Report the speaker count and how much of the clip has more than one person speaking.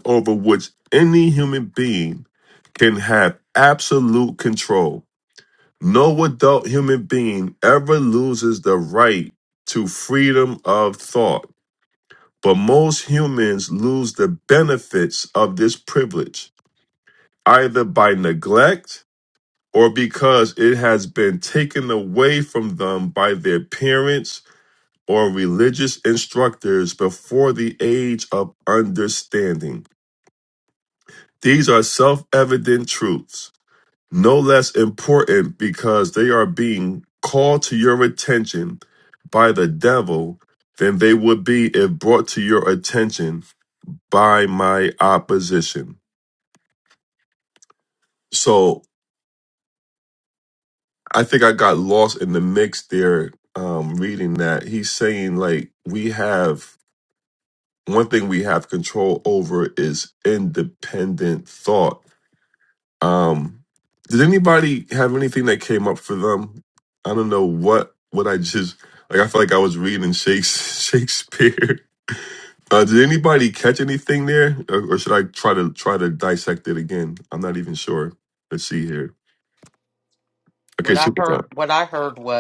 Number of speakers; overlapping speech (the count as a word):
two, about 1%